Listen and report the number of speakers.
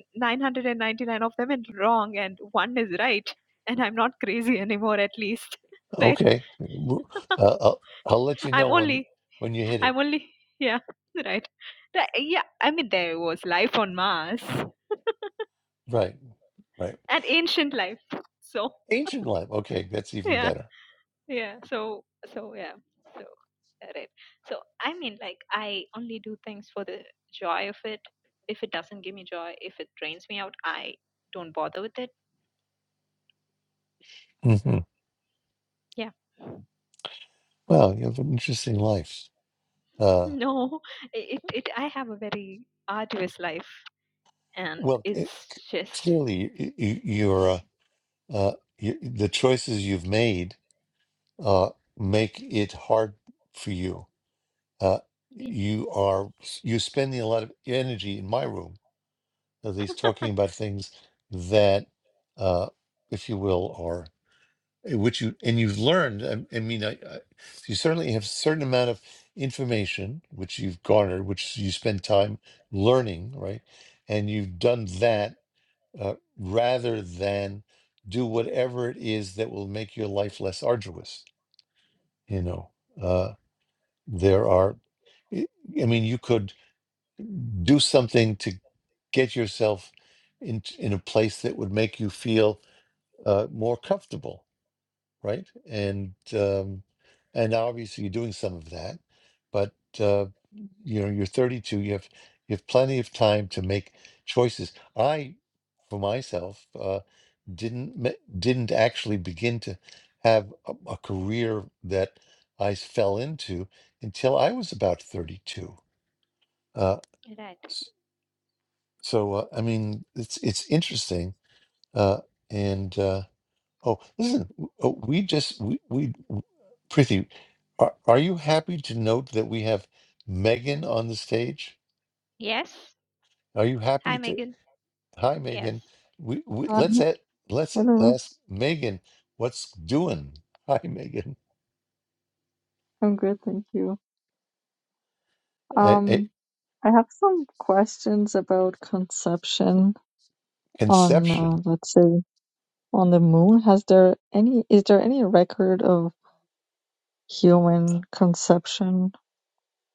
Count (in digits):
3